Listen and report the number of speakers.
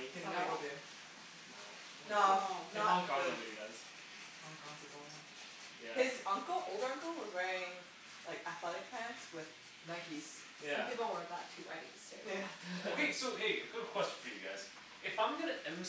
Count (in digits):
4